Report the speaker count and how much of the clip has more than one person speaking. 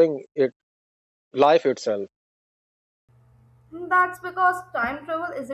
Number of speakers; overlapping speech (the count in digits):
2, no overlap